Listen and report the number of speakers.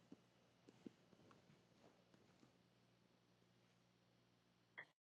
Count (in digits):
0